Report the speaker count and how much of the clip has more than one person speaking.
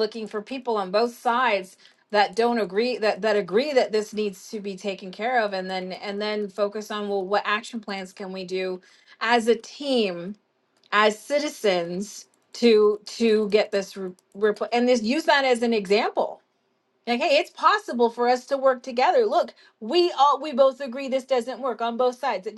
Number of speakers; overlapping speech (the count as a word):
one, no overlap